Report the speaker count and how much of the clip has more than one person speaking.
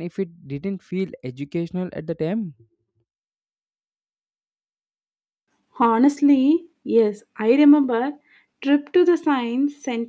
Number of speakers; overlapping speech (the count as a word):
two, no overlap